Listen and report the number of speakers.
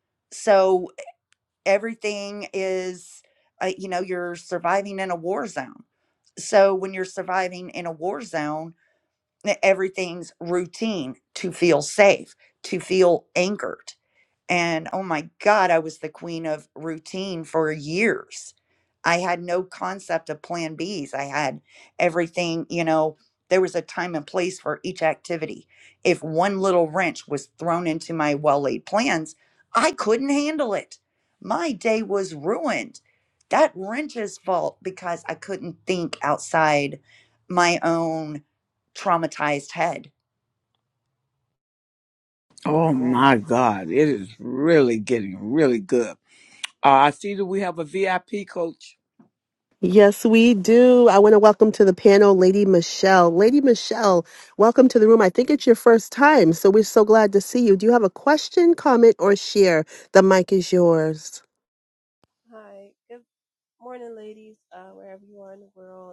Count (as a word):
four